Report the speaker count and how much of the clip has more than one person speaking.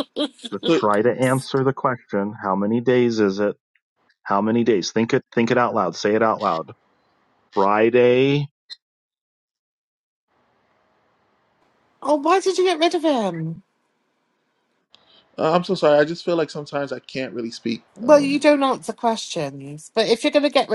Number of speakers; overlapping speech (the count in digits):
3, about 2%